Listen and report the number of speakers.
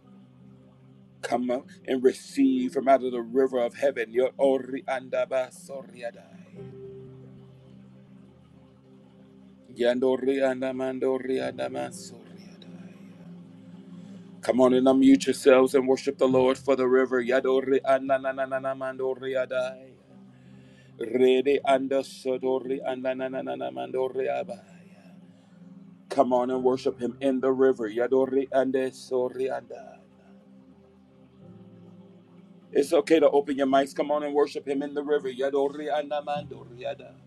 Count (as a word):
one